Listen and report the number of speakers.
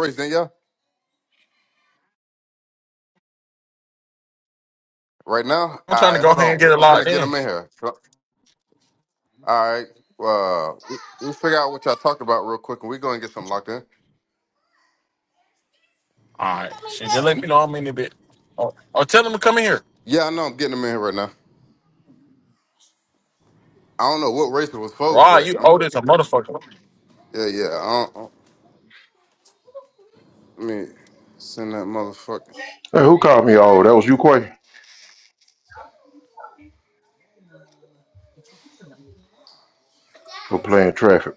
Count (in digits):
3